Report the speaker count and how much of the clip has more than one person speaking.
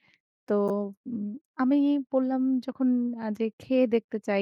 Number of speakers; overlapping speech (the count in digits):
1, no overlap